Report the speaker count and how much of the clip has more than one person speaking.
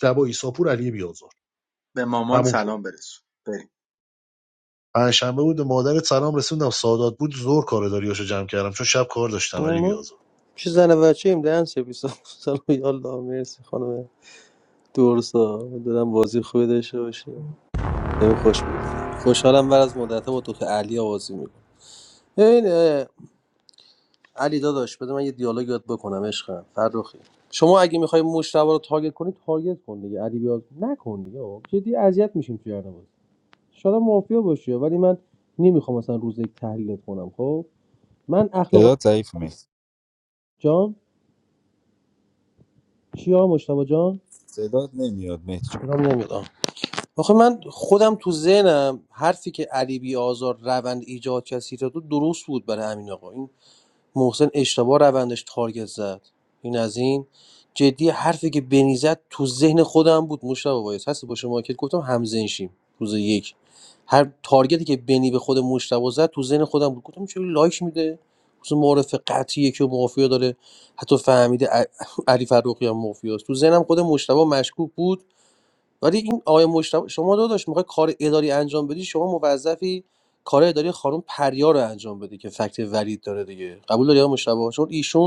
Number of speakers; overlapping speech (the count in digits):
4, about 1%